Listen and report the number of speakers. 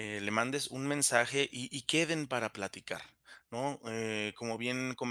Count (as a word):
one